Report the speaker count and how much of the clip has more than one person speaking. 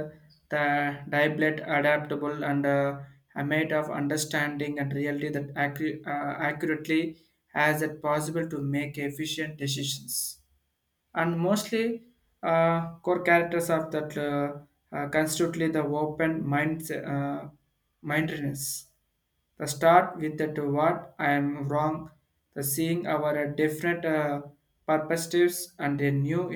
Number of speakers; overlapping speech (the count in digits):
1, no overlap